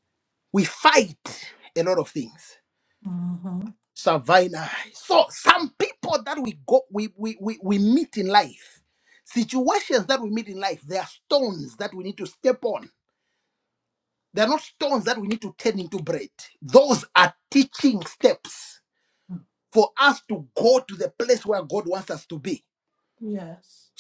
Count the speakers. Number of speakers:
2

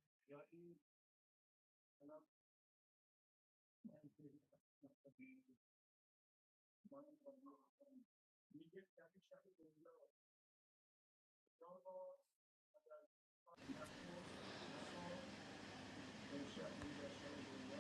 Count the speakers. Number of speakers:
0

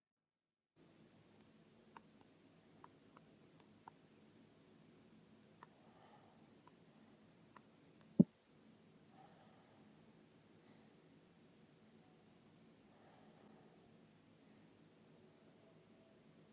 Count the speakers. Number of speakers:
0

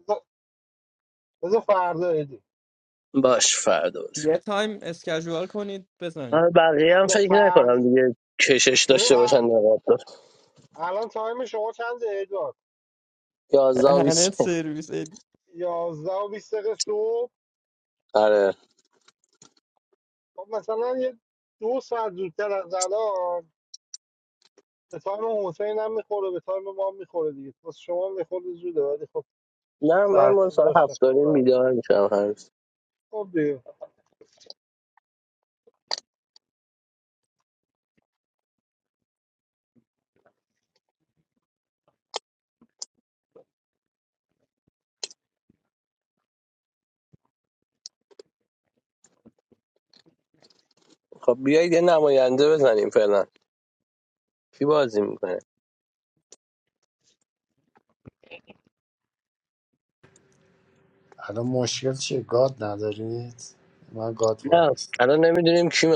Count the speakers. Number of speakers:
4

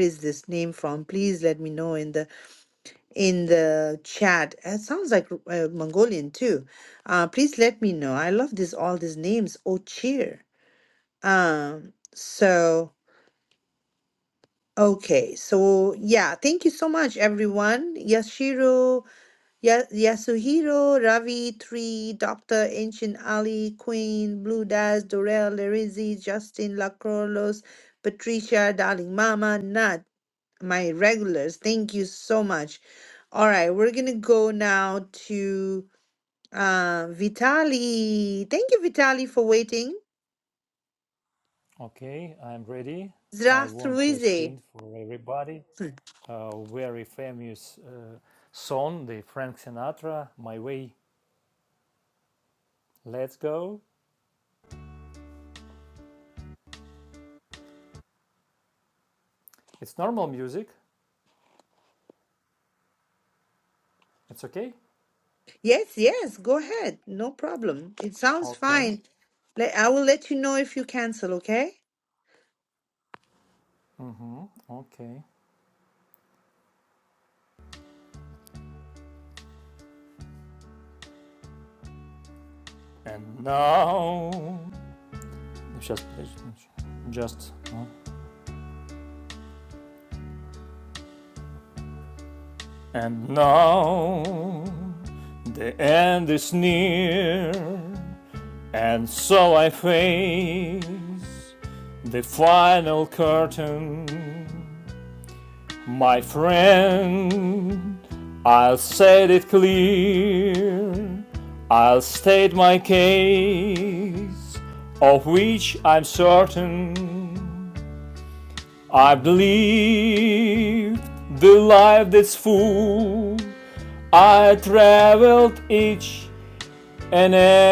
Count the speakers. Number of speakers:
2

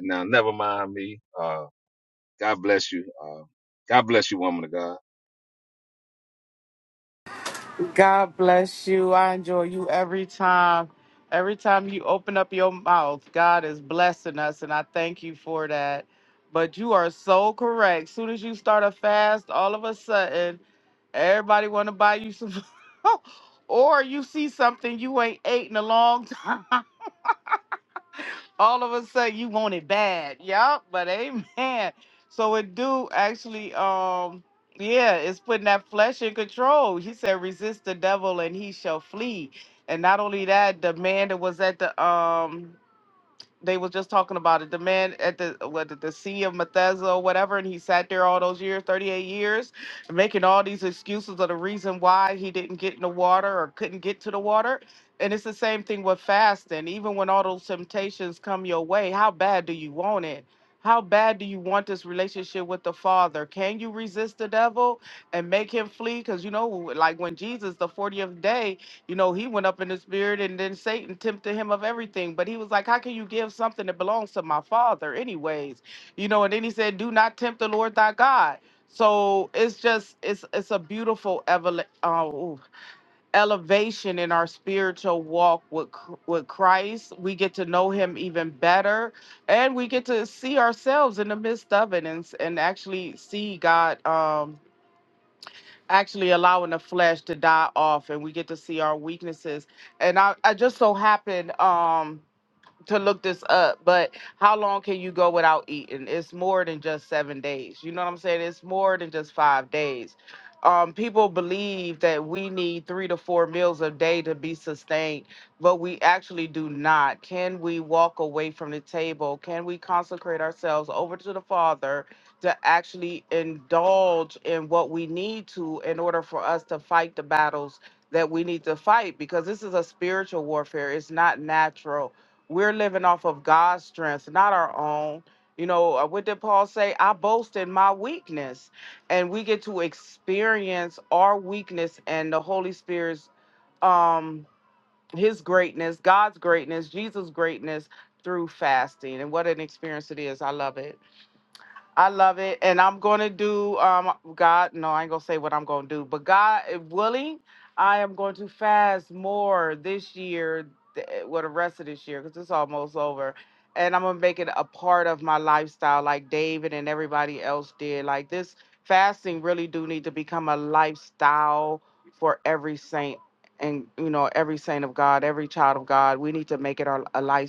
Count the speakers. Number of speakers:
2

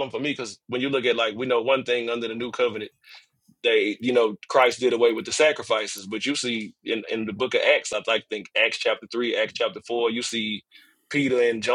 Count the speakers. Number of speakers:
1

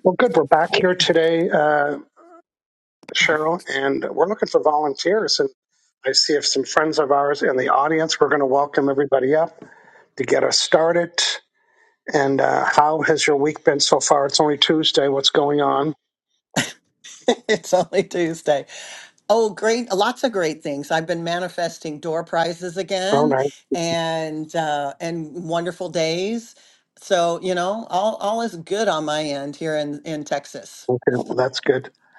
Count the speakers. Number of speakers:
2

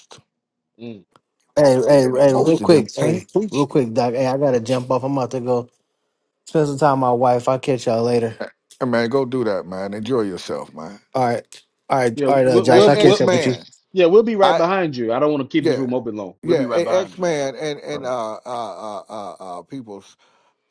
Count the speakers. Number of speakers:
3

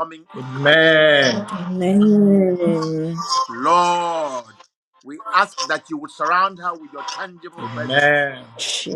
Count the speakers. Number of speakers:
3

